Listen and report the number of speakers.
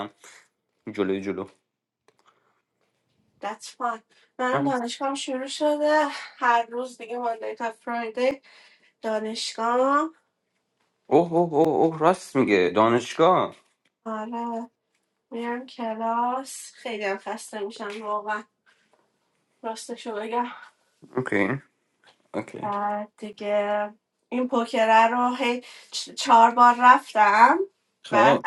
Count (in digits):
2